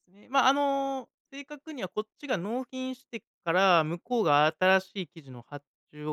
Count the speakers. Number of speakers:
1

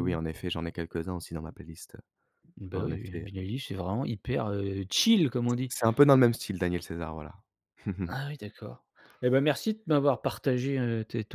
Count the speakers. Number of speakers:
2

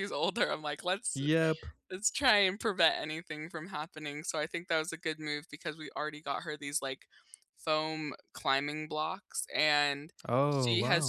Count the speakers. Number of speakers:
2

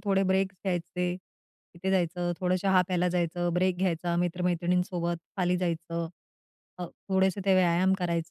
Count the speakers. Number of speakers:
1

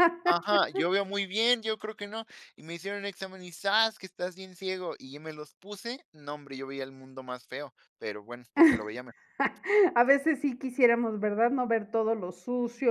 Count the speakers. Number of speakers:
2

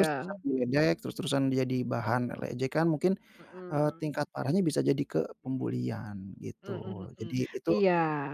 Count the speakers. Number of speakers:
2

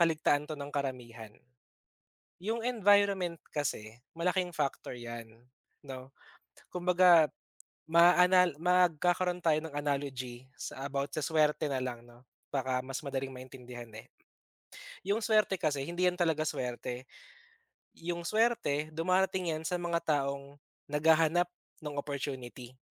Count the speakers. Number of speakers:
1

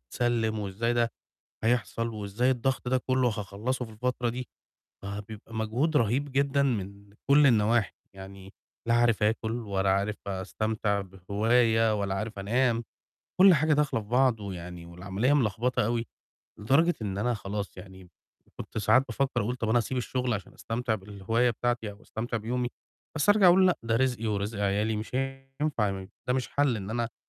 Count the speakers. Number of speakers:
1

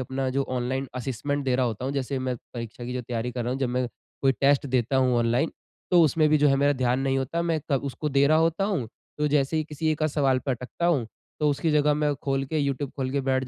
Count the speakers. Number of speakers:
1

